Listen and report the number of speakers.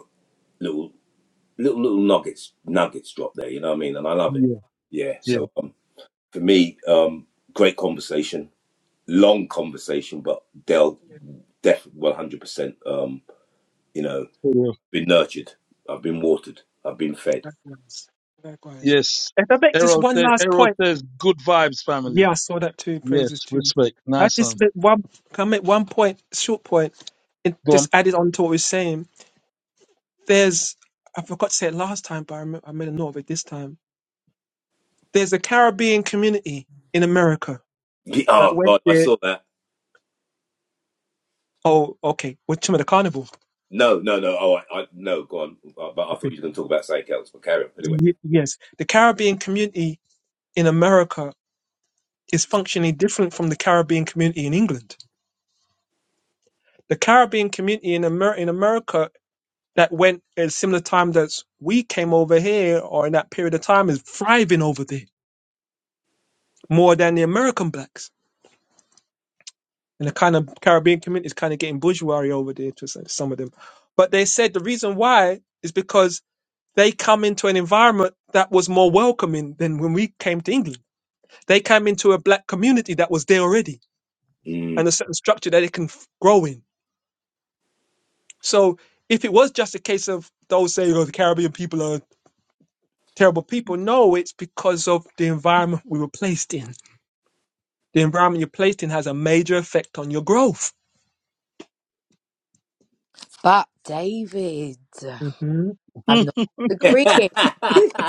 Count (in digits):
4